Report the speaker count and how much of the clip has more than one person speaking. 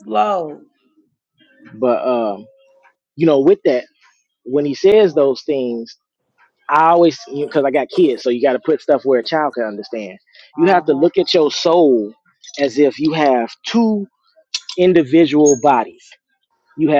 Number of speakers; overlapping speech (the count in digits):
2, about 3%